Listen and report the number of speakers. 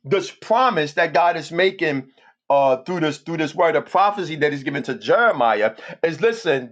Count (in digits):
1